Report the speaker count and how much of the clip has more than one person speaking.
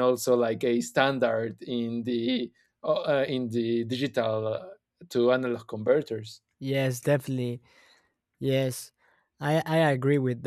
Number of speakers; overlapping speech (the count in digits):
2, no overlap